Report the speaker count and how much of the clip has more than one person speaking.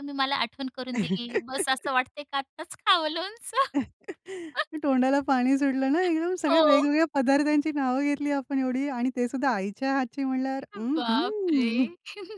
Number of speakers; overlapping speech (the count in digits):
2, about 12%